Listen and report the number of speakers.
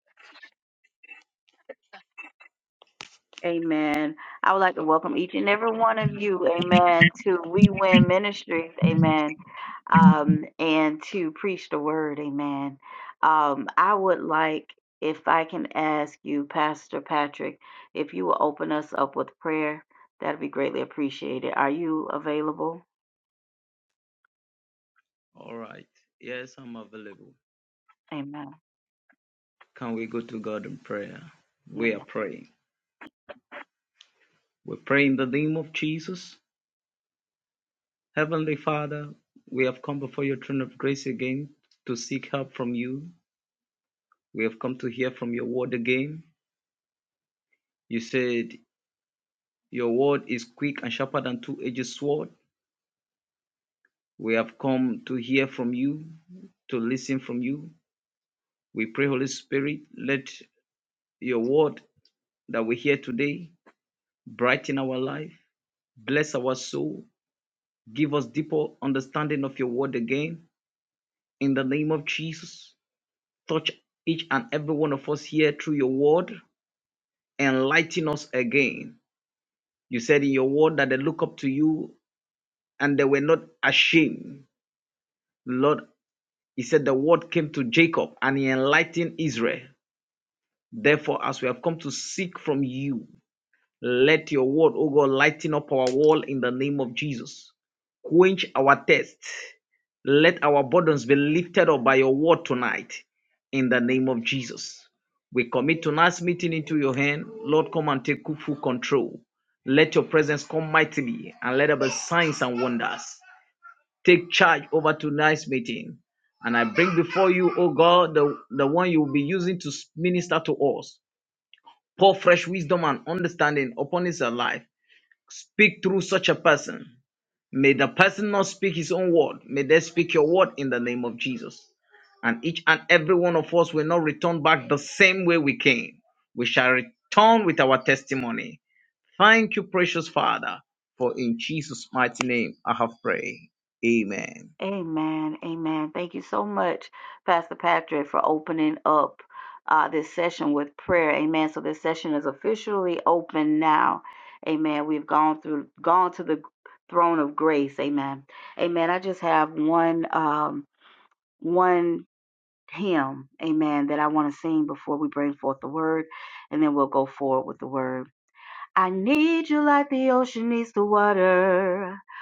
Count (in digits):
2